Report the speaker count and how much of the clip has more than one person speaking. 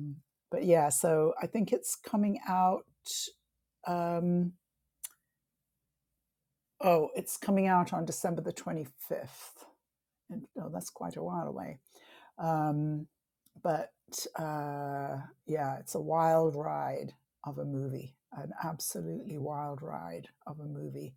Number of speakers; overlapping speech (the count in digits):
1, no overlap